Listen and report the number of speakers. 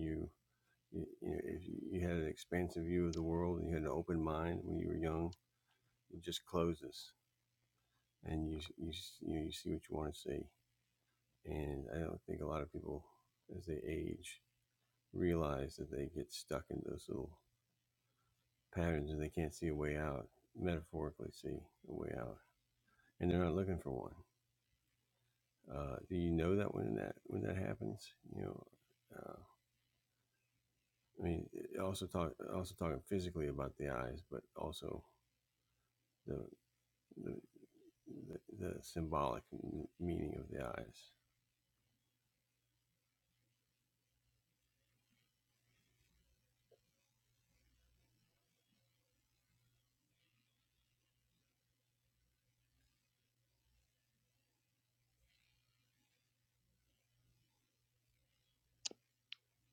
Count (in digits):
1